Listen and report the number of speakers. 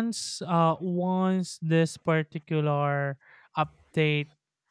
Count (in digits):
1